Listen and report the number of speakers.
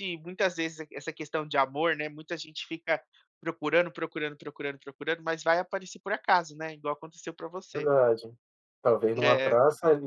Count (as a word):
two